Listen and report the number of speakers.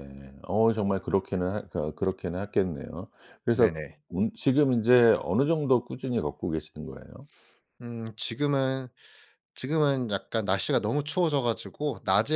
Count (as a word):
two